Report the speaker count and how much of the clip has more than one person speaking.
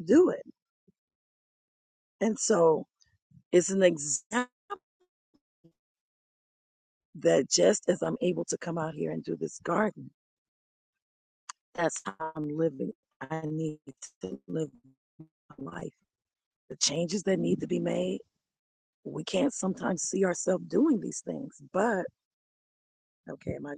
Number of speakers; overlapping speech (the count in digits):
1, no overlap